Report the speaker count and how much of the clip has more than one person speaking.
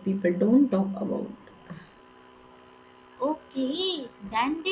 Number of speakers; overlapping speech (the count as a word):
two, no overlap